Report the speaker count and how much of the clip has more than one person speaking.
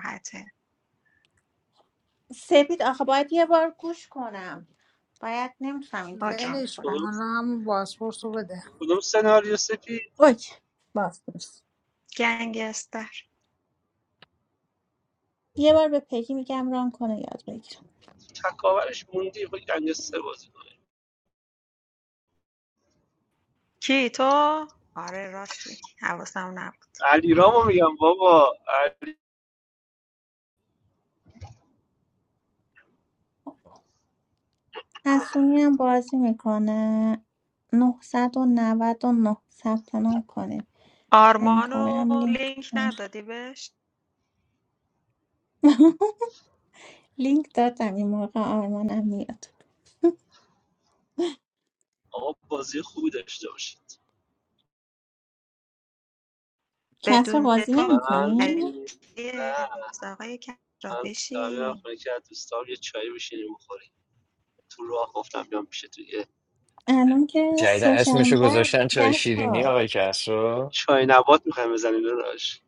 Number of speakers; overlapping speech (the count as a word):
five, about 10%